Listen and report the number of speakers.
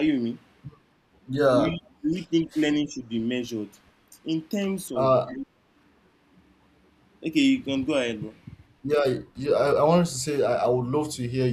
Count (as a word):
two